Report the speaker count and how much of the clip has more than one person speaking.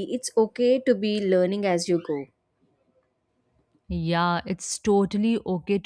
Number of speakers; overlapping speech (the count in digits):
2, no overlap